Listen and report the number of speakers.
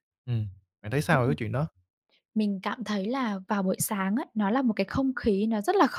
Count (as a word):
two